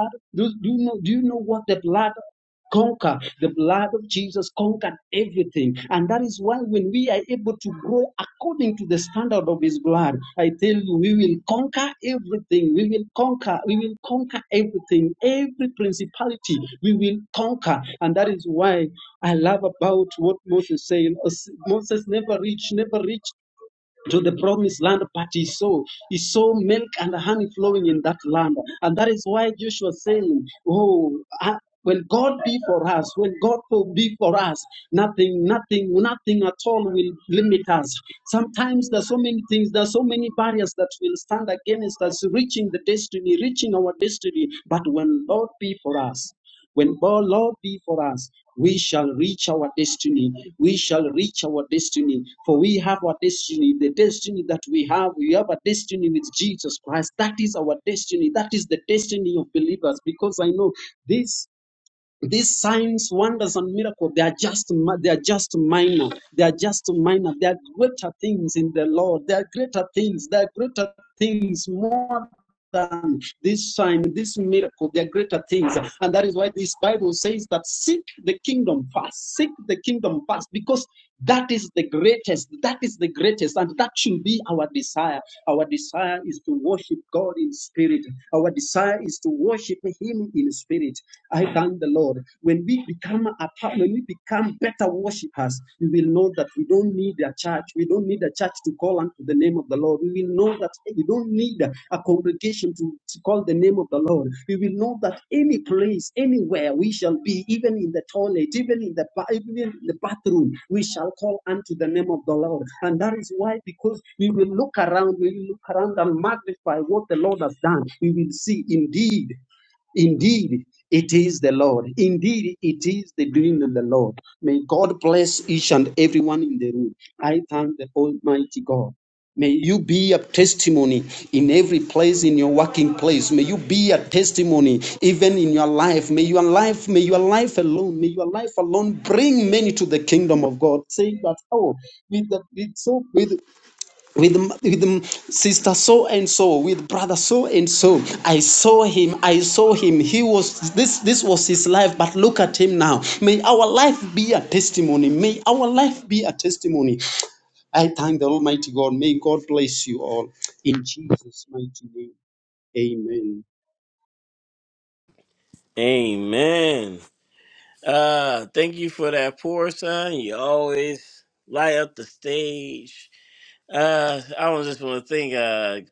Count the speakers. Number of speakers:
2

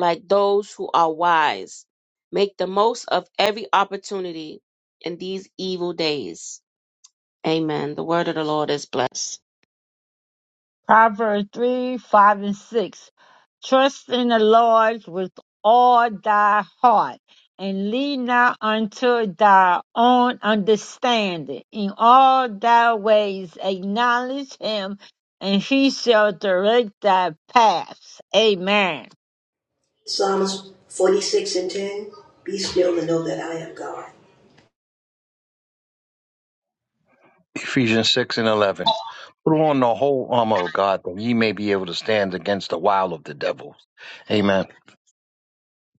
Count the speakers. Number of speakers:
4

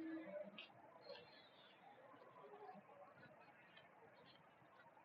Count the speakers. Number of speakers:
0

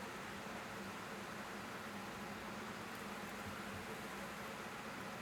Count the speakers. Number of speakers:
0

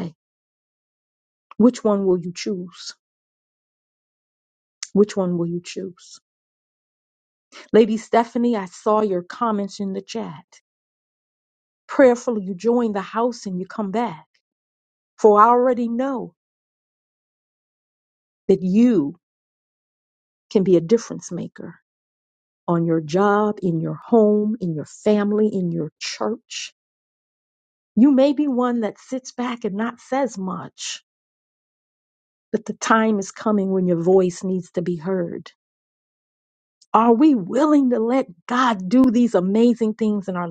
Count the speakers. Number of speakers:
1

